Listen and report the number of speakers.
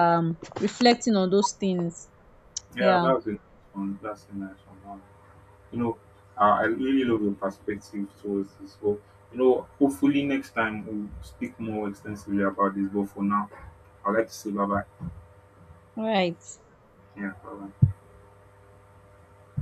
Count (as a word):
two